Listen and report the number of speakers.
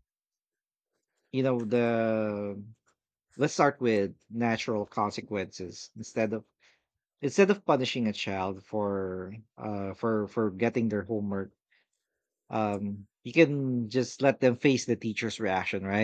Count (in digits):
1